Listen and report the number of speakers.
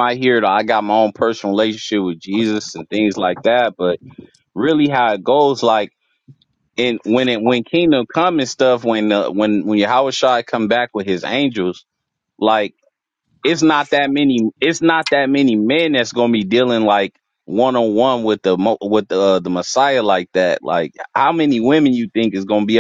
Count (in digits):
1